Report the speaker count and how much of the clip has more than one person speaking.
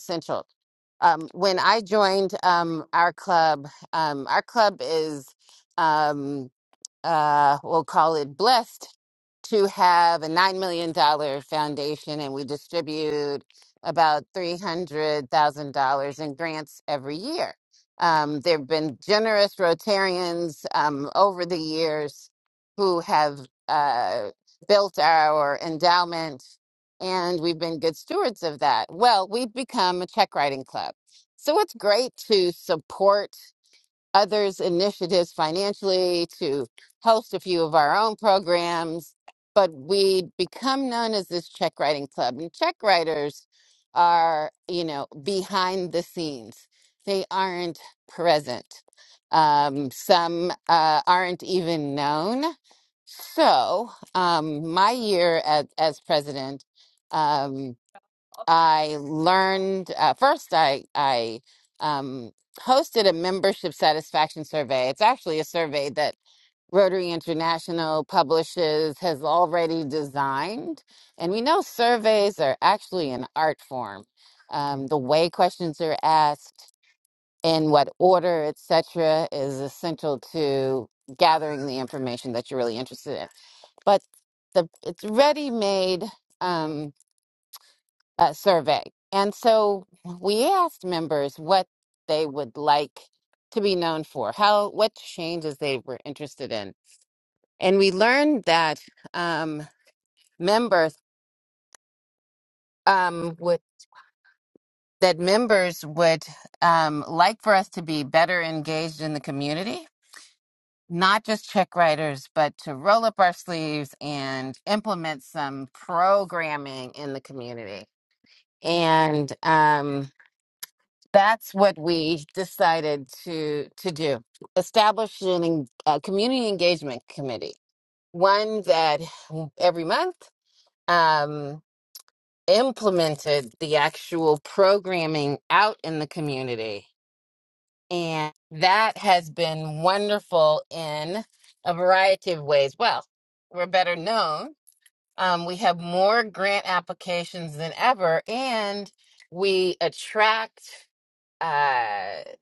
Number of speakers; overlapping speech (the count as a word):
one, no overlap